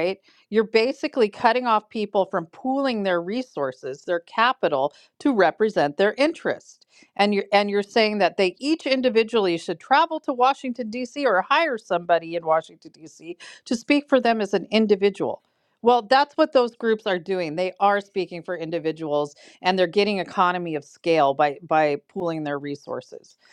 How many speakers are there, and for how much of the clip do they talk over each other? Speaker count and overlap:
1, no overlap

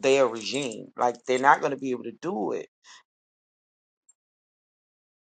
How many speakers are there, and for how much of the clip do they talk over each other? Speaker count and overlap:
1, no overlap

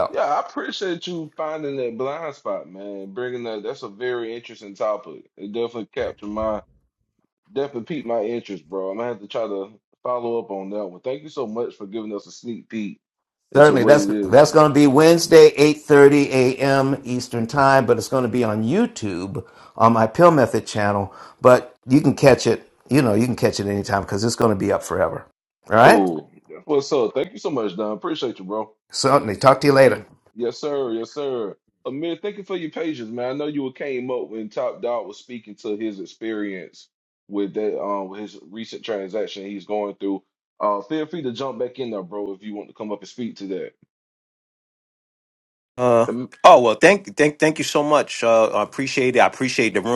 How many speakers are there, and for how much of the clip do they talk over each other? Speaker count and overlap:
3, about 2%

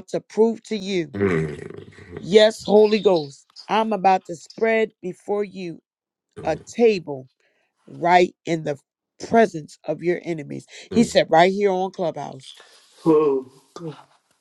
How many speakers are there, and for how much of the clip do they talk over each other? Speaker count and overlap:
2, about 1%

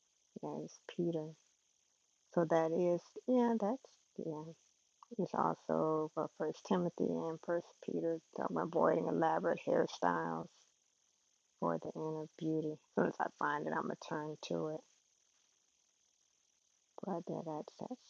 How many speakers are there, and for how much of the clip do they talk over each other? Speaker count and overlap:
1, no overlap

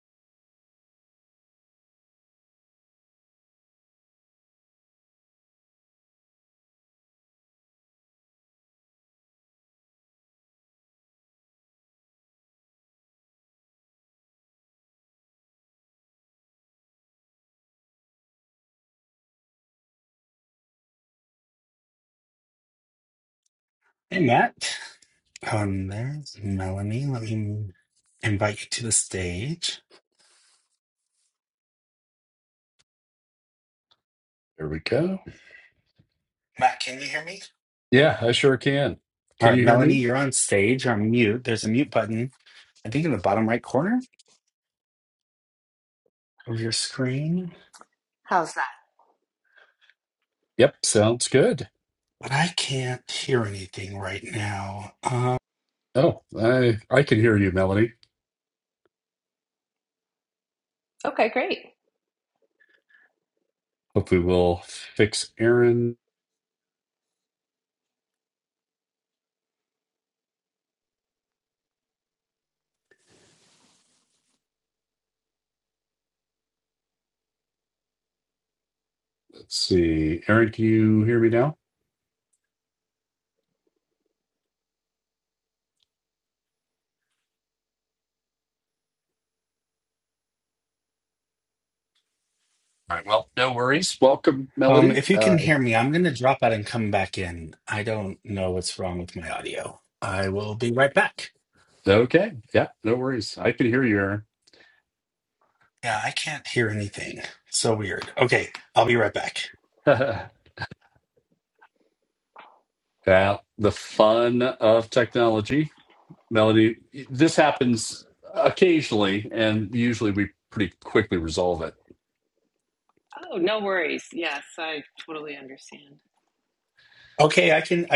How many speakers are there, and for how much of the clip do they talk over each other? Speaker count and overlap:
3, about 1%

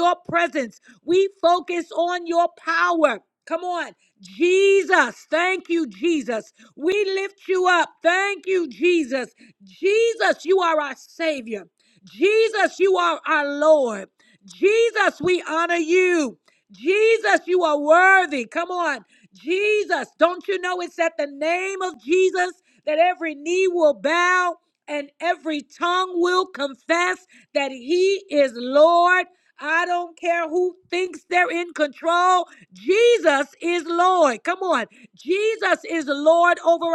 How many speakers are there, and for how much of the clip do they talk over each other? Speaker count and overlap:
1, no overlap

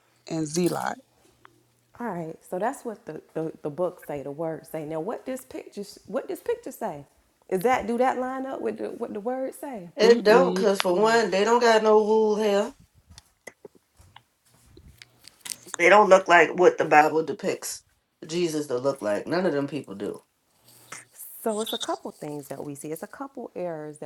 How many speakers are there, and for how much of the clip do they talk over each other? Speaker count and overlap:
3, about 4%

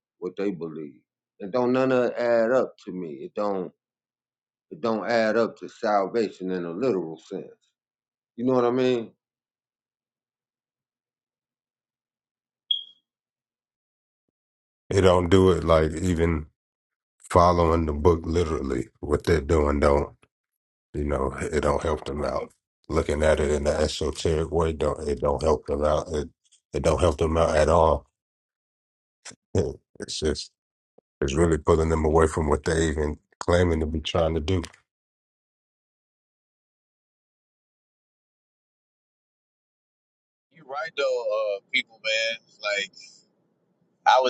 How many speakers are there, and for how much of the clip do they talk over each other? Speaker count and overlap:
3, no overlap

